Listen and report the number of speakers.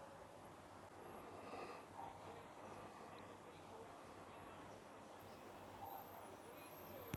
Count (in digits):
0